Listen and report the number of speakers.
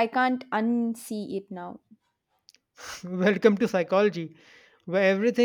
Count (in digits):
2